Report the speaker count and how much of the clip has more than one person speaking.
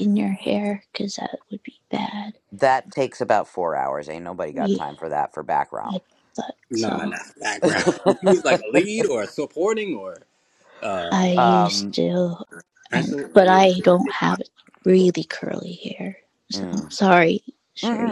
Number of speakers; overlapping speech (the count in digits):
3, about 18%